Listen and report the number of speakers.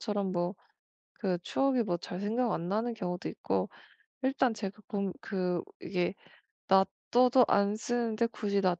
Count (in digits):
1